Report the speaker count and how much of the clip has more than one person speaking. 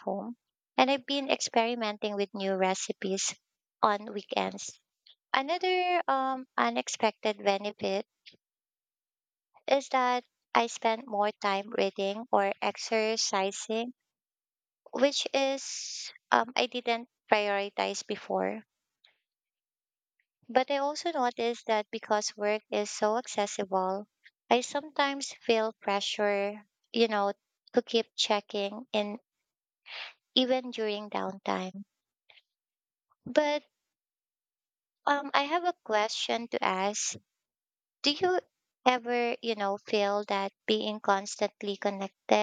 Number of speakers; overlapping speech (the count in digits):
1, no overlap